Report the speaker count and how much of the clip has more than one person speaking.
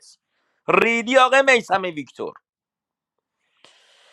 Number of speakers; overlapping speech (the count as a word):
one, no overlap